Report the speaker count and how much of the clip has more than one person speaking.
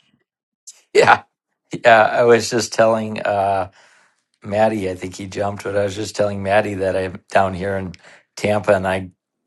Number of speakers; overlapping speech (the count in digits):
1, no overlap